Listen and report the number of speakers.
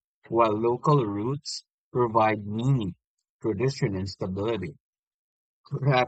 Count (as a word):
one